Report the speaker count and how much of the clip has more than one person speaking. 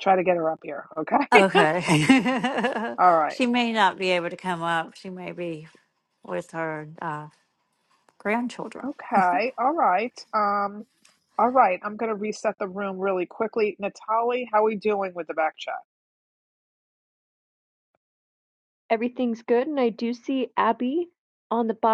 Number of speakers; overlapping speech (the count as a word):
three, about 1%